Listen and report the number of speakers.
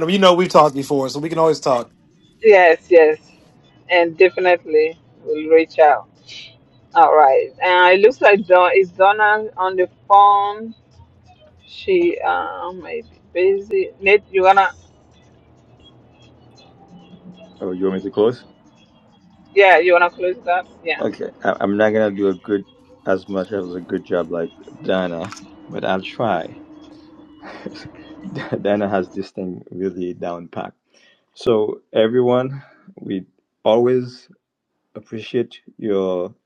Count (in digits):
3